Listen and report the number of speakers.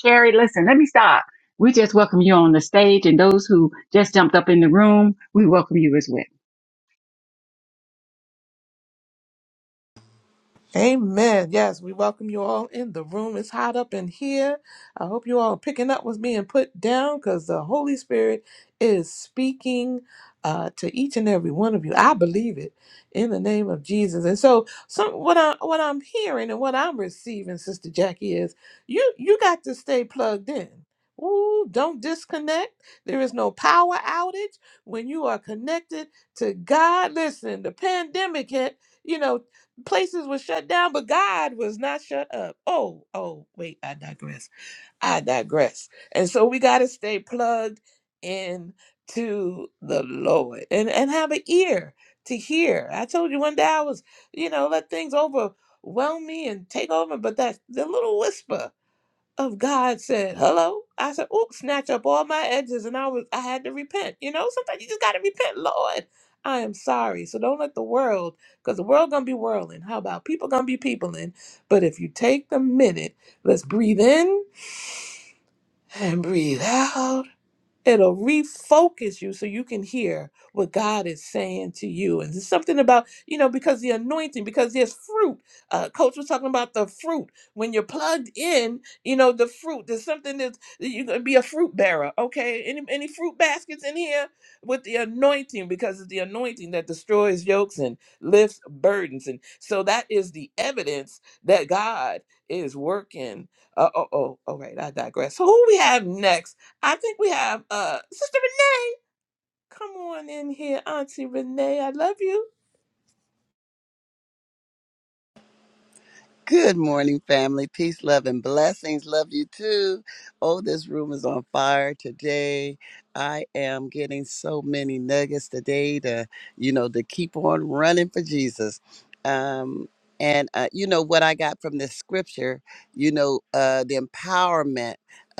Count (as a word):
three